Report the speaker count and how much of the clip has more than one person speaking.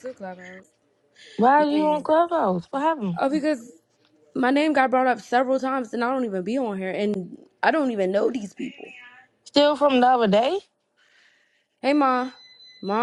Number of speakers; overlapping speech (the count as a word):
two, about 2%